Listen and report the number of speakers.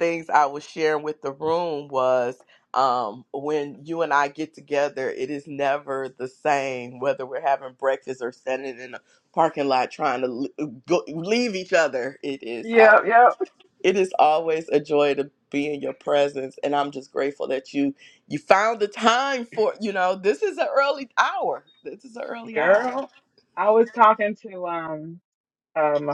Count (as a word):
two